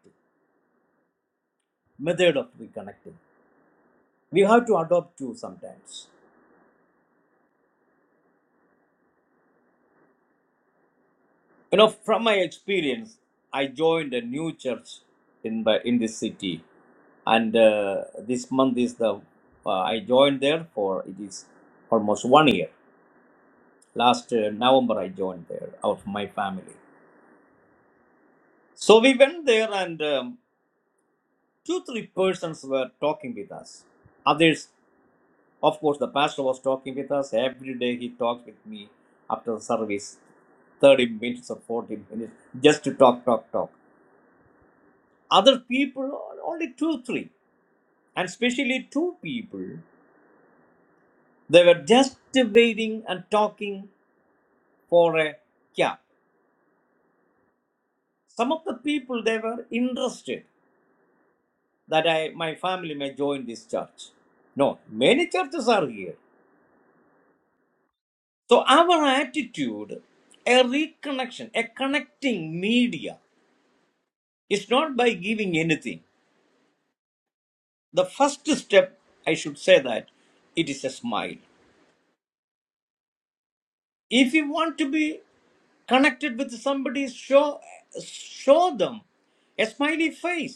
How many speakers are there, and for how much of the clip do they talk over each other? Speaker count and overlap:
one, no overlap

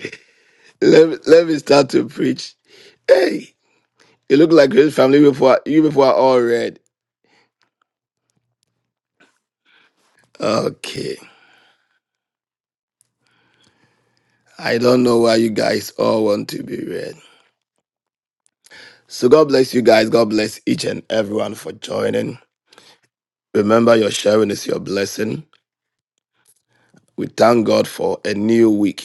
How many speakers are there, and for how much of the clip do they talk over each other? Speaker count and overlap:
one, no overlap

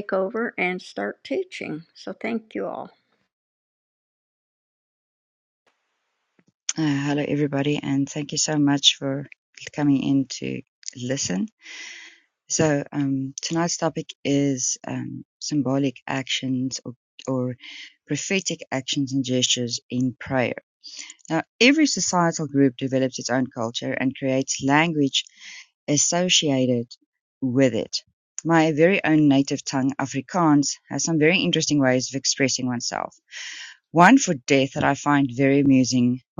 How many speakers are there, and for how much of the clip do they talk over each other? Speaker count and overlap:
two, no overlap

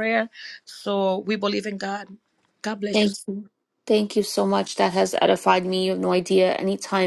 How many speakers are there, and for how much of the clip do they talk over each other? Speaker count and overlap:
two, about 3%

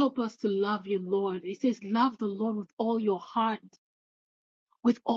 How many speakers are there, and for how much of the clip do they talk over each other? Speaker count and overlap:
one, no overlap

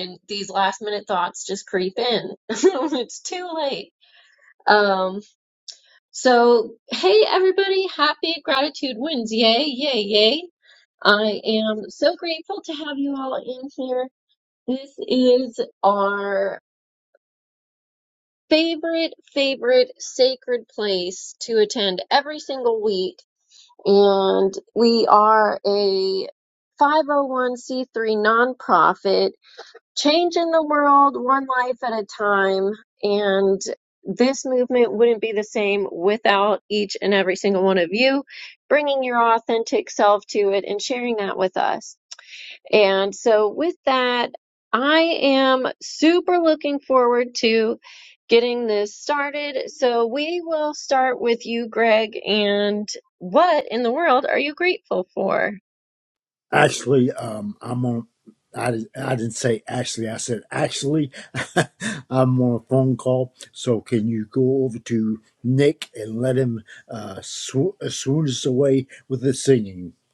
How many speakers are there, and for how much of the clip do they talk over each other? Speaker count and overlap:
two, no overlap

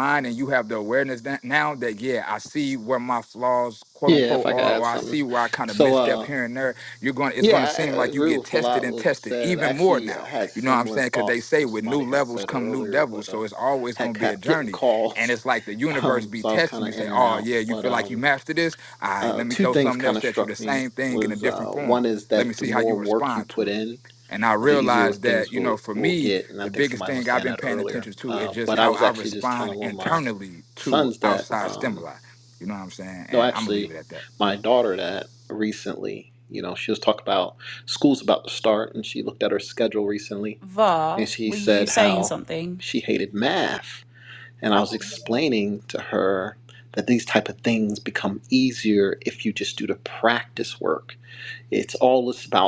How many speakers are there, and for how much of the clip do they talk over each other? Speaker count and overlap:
three, about 46%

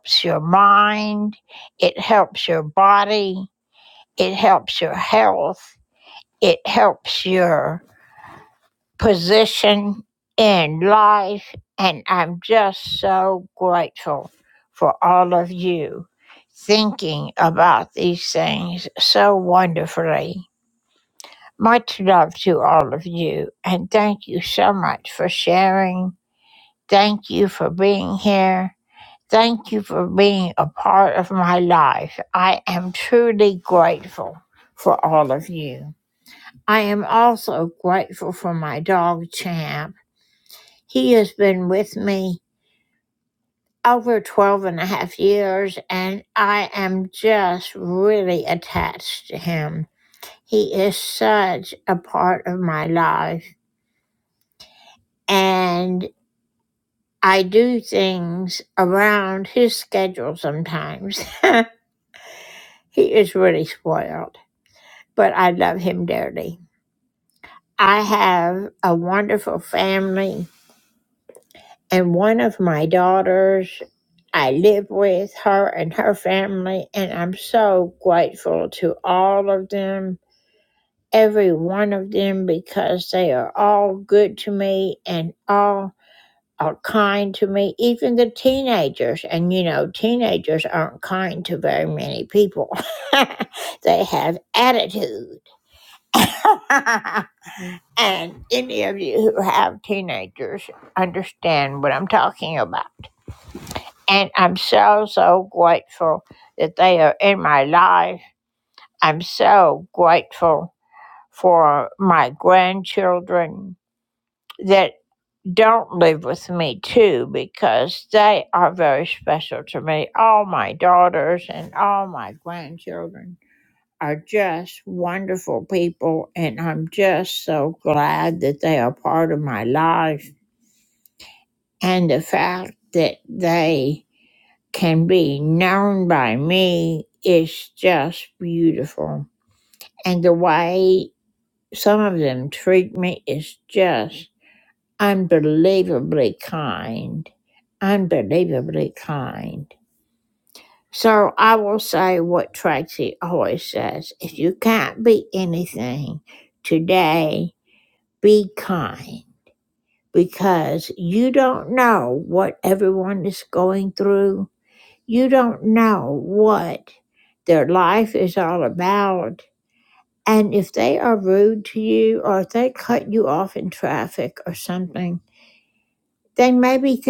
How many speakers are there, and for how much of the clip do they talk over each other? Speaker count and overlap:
one, no overlap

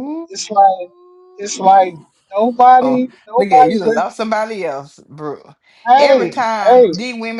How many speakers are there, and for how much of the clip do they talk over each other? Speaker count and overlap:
two, about 24%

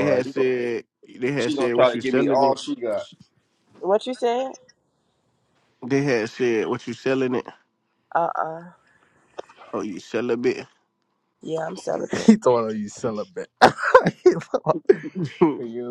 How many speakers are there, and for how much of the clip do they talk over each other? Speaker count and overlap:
four, about 11%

